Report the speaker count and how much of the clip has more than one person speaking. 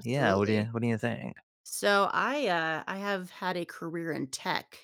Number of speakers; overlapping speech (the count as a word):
two, about 14%